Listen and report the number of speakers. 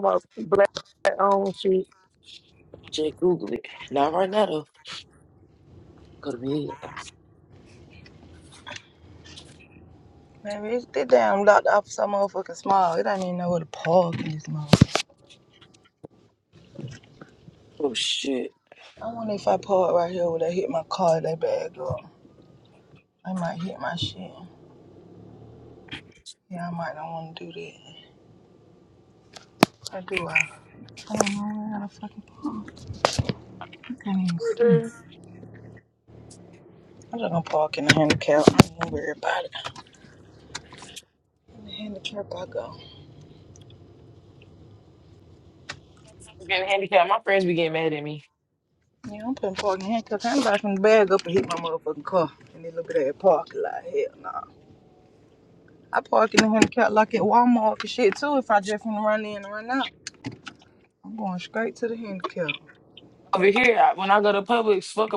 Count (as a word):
three